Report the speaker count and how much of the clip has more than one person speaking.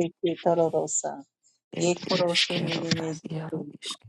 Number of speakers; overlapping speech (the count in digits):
2, about 33%